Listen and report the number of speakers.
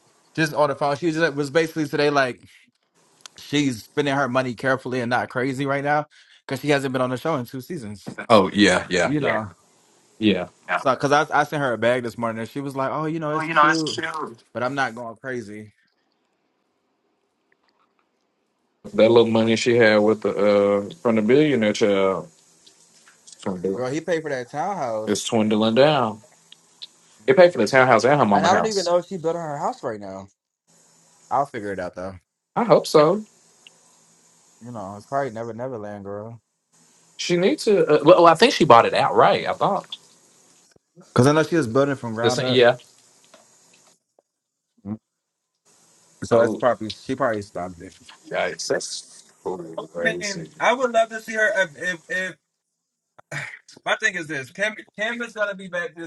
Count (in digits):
2